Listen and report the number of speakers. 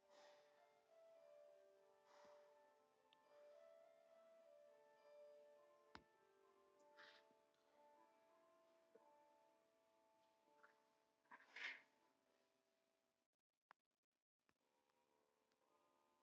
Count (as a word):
zero